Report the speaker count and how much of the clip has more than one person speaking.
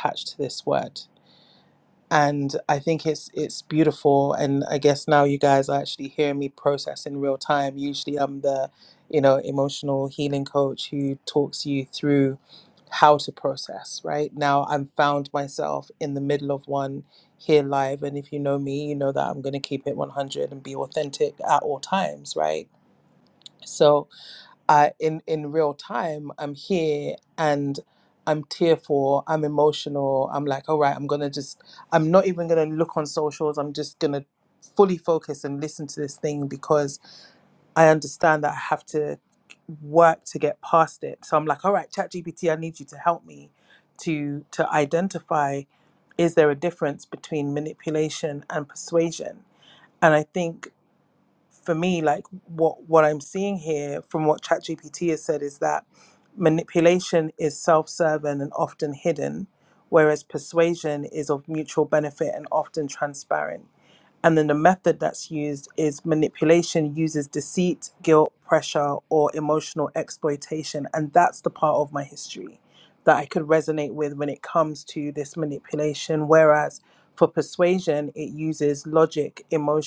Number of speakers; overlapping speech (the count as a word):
one, no overlap